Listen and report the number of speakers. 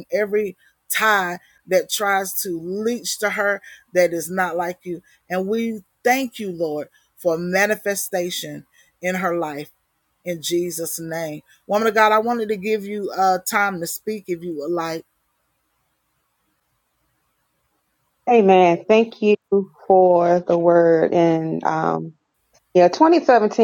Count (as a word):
two